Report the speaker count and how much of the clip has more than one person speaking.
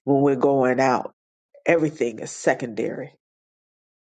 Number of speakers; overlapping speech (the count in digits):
1, no overlap